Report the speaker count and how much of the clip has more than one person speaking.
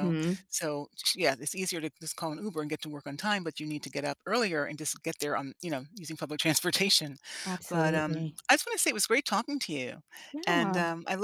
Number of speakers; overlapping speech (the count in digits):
2, about 10%